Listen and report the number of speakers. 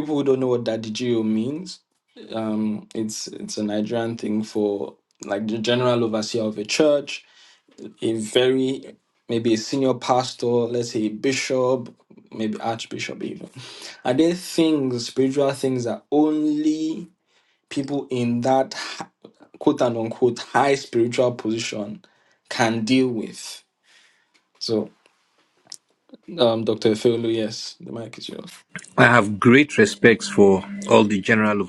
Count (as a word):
two